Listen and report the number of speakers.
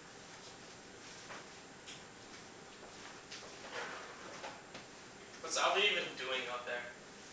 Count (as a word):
one